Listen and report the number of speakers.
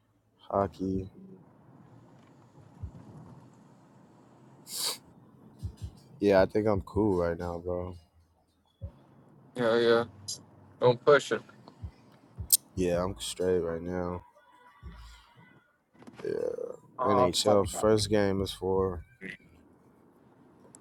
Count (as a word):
two